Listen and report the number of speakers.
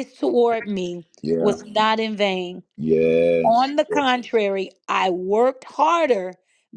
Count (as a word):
two